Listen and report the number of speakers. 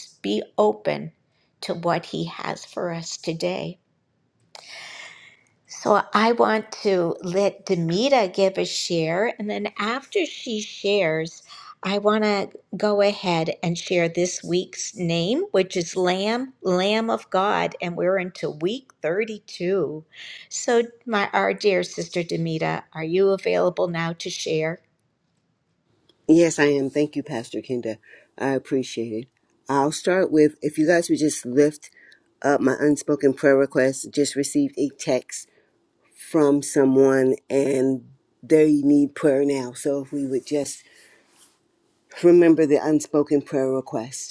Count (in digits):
2